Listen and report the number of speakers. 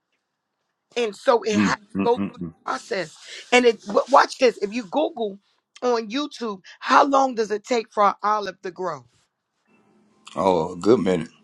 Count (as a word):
two